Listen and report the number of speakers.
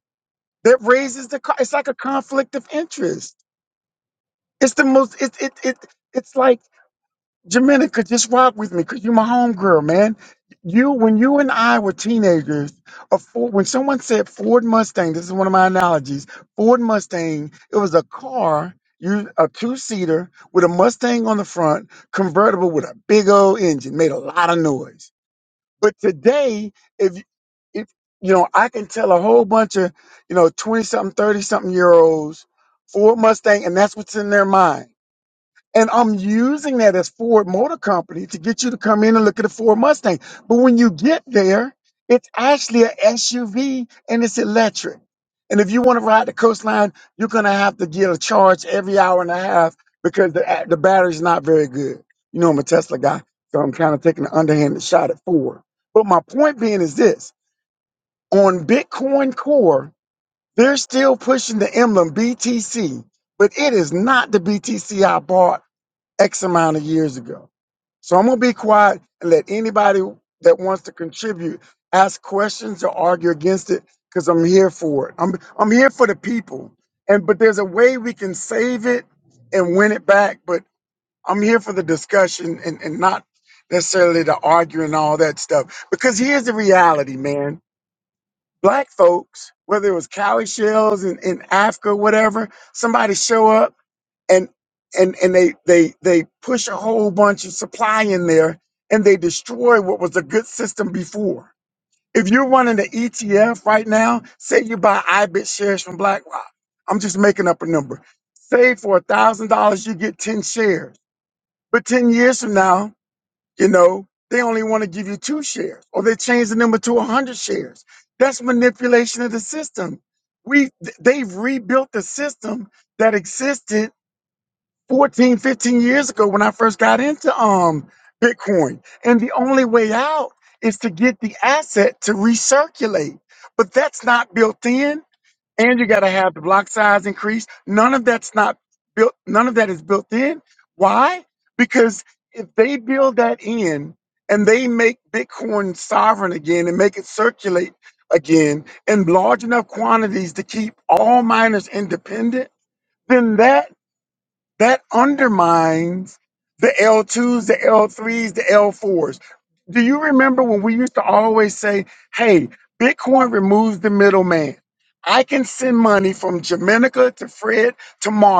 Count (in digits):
1